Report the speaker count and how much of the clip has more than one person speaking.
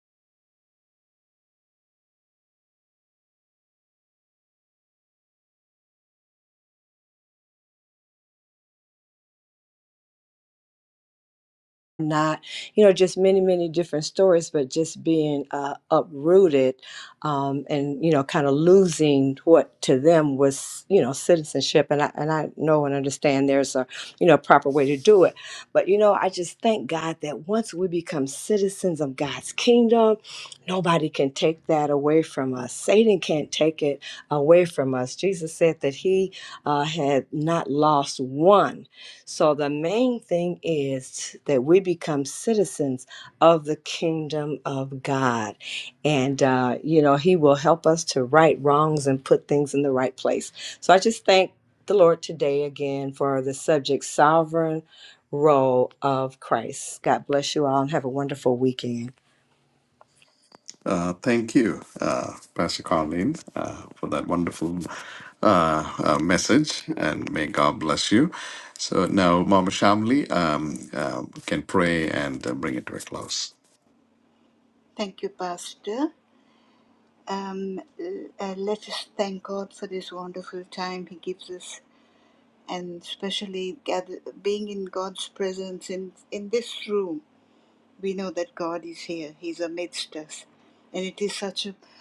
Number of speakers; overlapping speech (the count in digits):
3, no overlap